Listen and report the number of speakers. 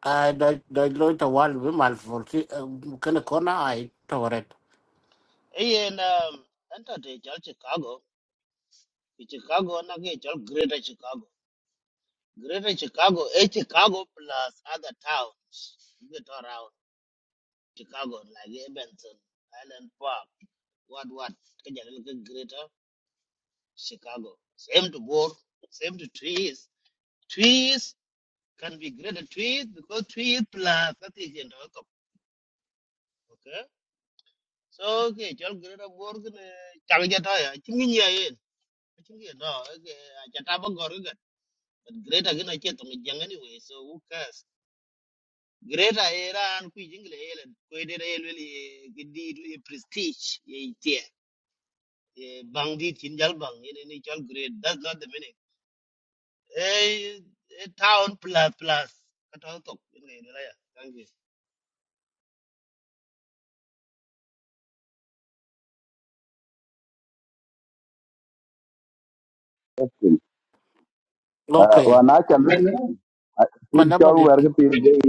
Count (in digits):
3